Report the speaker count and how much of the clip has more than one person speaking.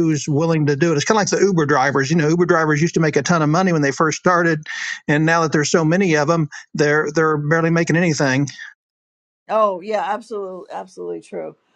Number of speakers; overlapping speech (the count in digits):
2, no overlap